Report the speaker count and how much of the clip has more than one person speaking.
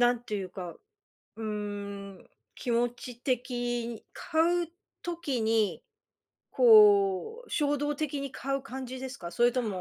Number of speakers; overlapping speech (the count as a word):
one, no overlap